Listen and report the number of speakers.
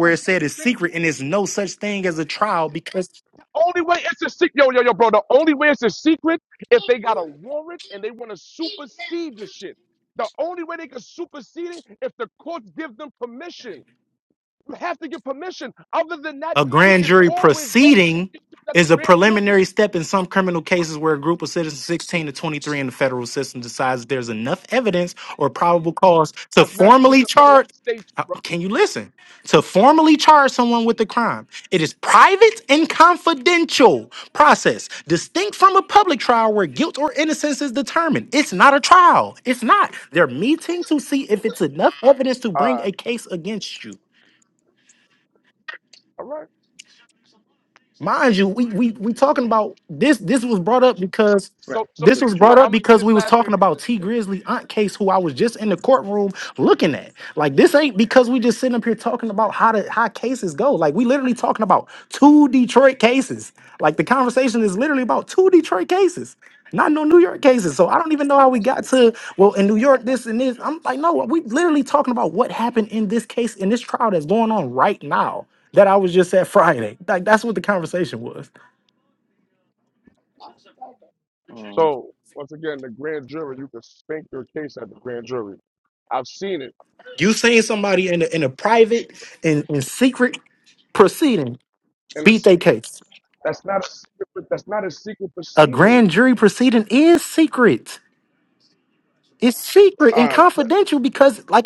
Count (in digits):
2